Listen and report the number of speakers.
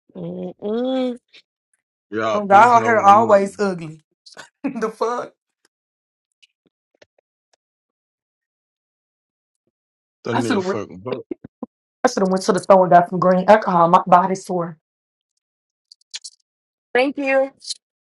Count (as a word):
three